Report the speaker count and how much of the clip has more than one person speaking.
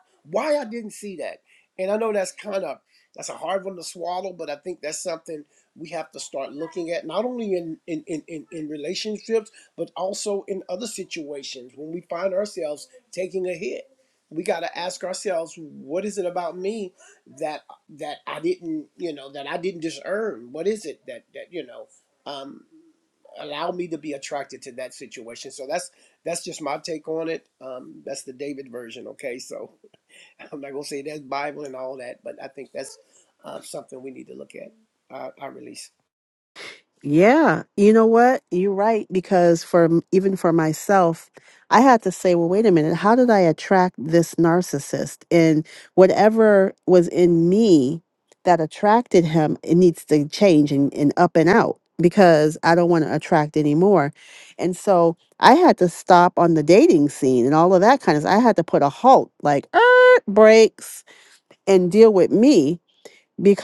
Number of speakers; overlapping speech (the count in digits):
2, no overlap